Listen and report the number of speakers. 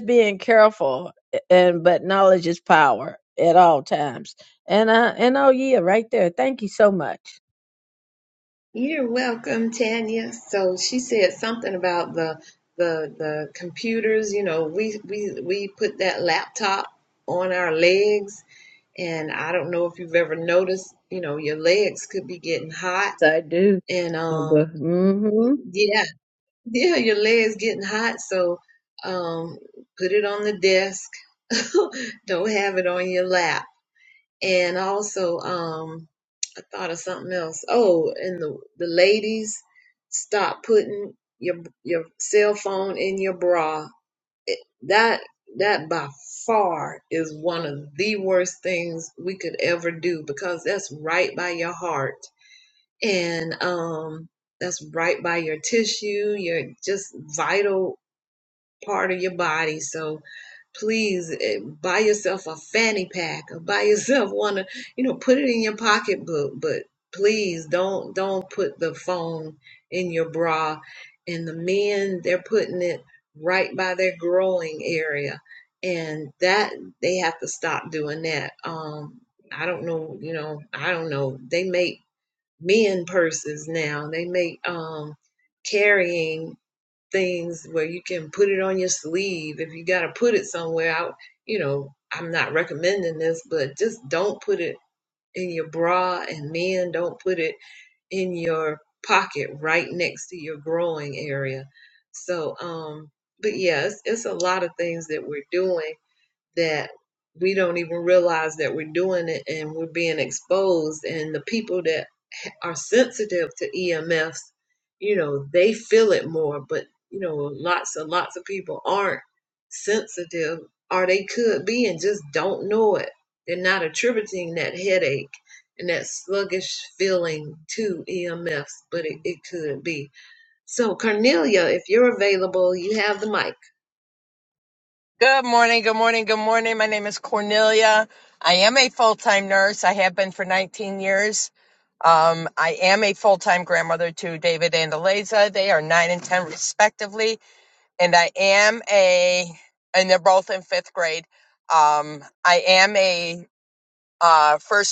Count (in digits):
3